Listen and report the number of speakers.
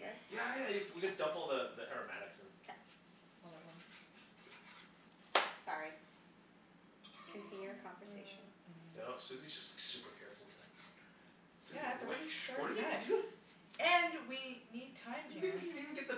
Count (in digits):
3